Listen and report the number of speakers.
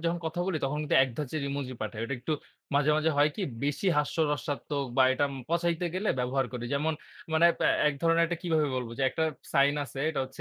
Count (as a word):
one